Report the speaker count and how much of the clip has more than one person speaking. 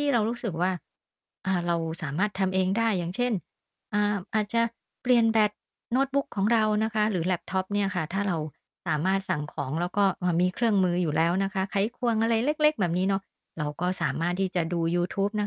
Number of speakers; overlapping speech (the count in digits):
1, no overlap